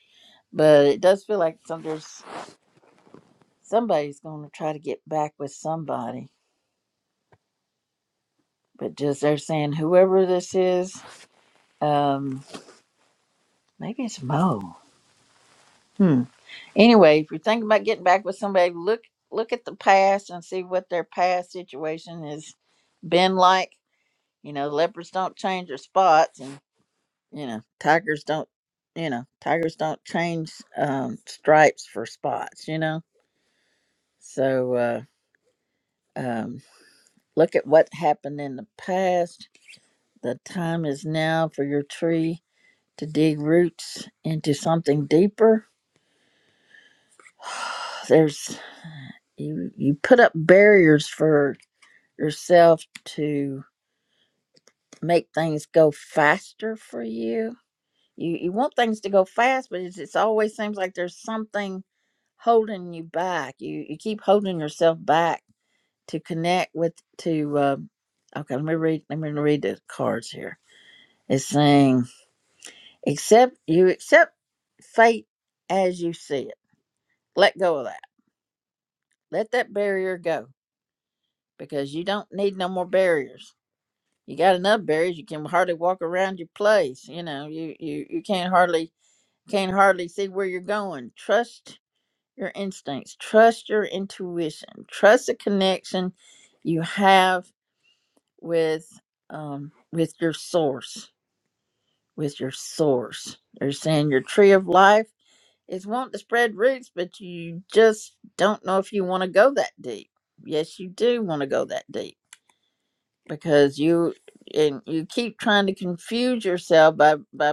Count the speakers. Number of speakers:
one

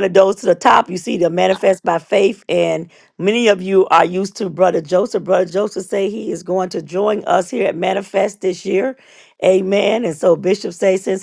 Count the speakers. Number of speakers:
one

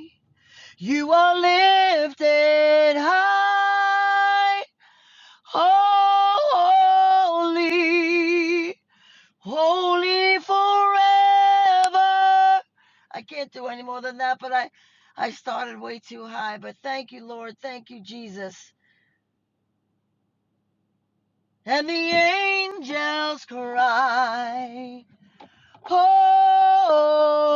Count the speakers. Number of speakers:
one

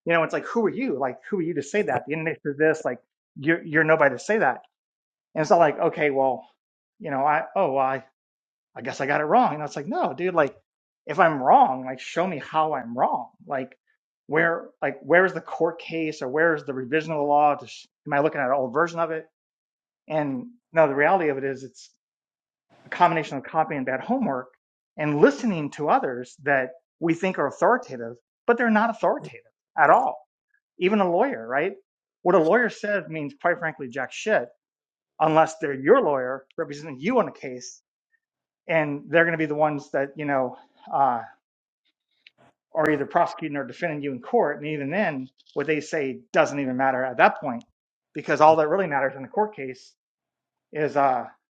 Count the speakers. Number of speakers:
one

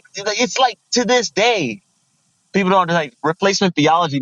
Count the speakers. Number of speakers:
one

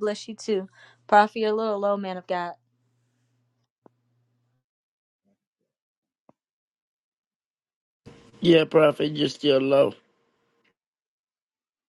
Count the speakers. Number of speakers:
two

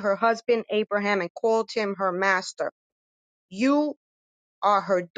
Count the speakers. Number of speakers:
one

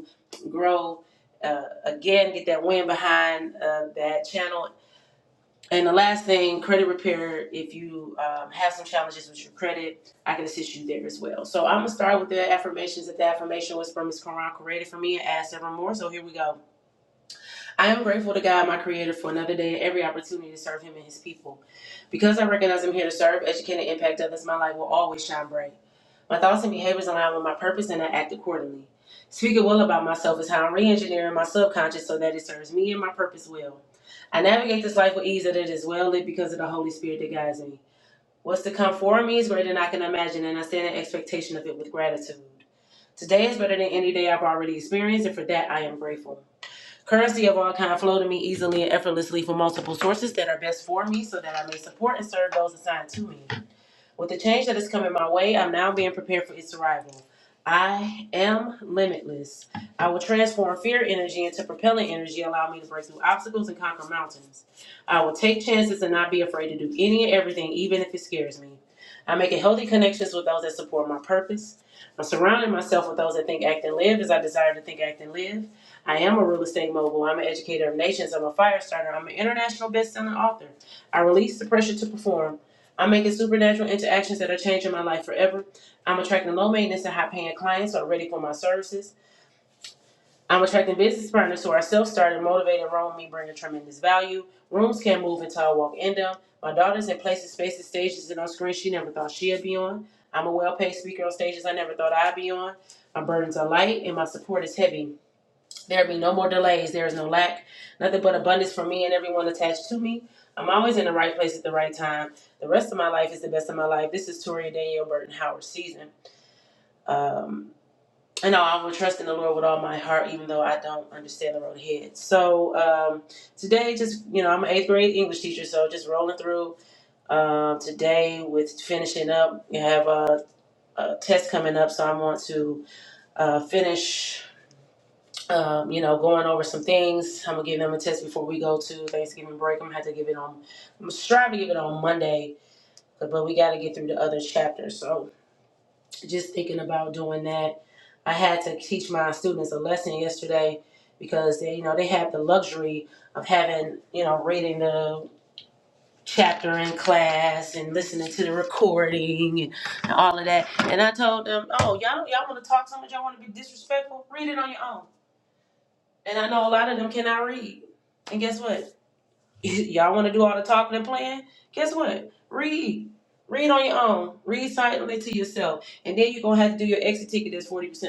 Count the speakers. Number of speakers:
one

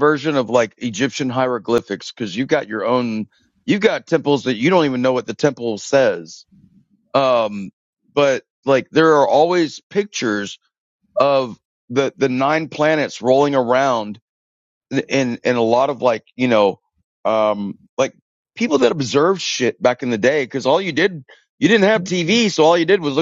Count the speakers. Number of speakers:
one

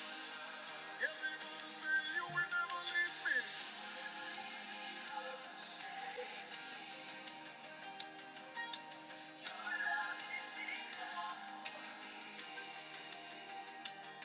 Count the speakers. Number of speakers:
zero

